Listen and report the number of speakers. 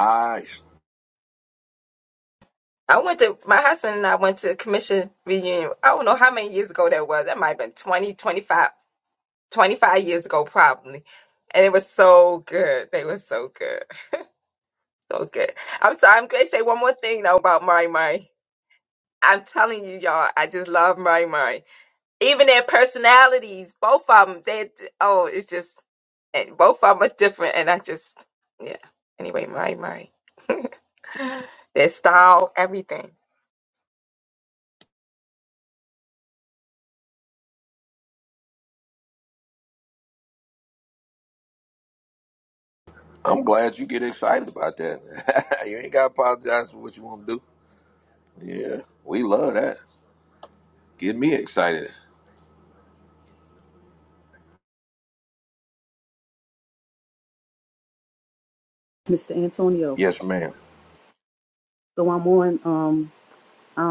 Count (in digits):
3